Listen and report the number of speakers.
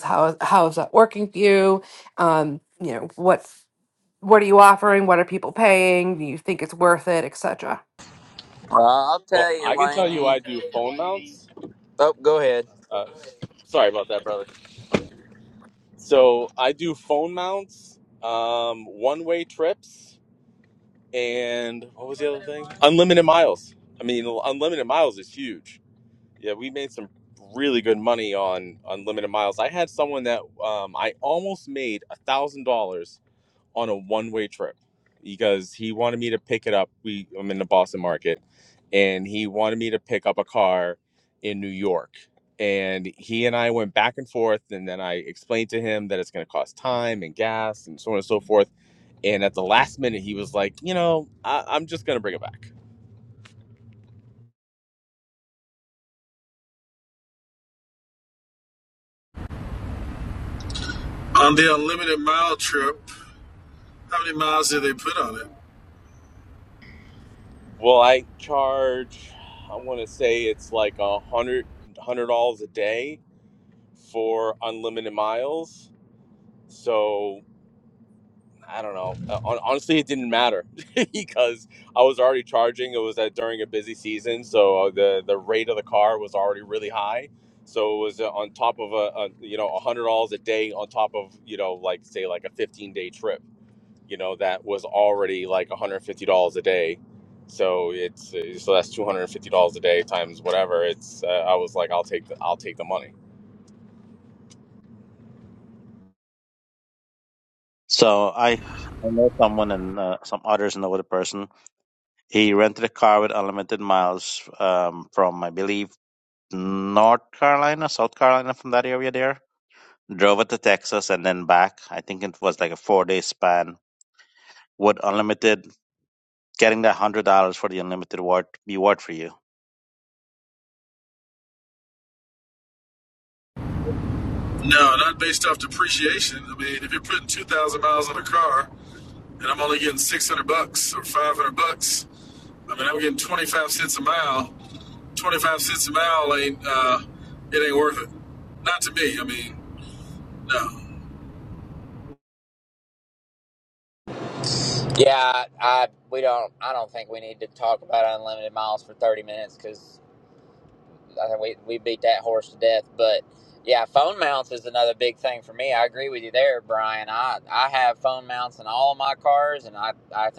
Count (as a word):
five